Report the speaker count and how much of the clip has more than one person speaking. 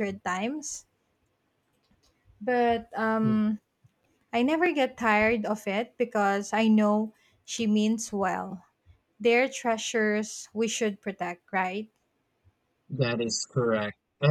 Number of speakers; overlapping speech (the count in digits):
2, no overlap